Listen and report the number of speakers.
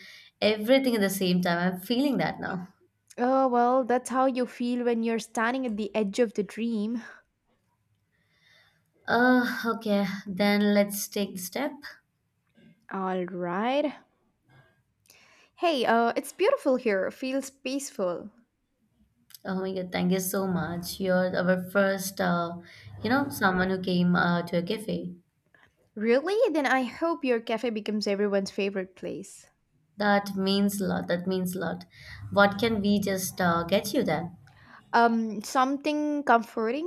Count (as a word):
two